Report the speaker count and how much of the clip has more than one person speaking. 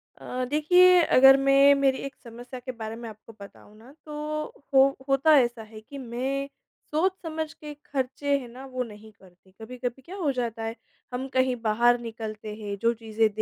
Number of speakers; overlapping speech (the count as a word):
one, no overlap